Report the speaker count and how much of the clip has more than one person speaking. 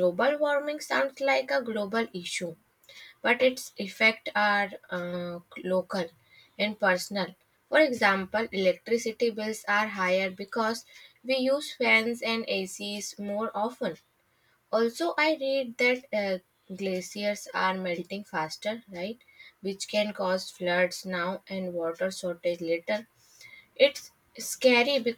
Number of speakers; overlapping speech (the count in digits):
1, no overlap